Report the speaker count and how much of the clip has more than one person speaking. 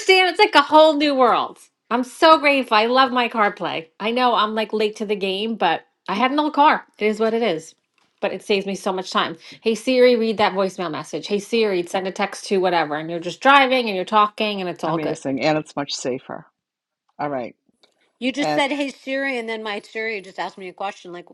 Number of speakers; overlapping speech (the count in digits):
3, about 3%